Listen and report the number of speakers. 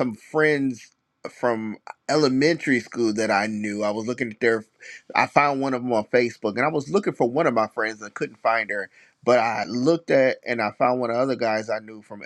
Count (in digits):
1